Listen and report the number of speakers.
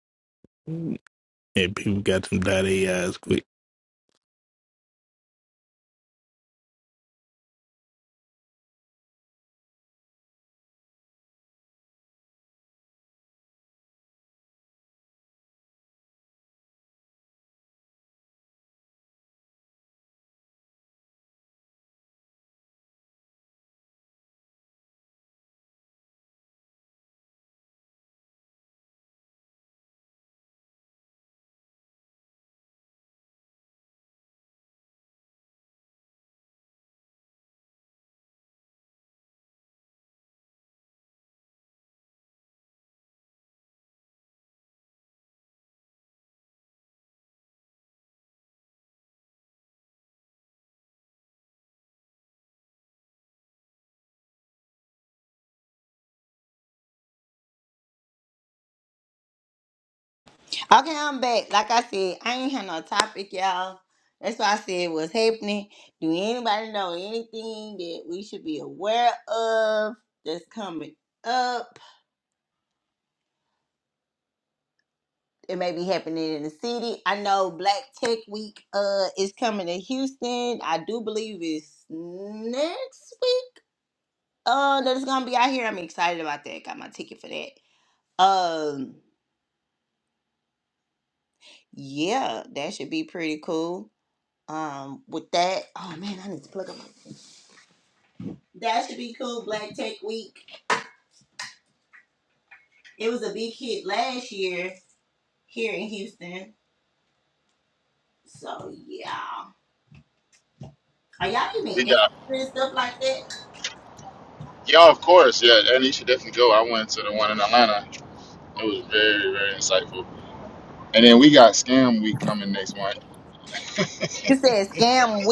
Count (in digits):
3